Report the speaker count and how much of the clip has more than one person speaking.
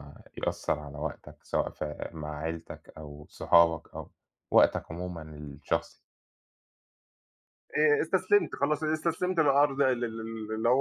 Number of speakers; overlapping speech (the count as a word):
two, no overlap